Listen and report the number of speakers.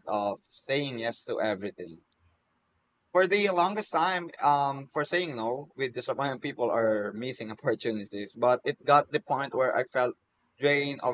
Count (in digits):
1